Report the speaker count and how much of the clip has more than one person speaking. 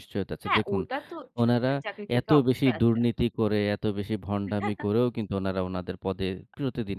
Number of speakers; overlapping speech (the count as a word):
two, about 24%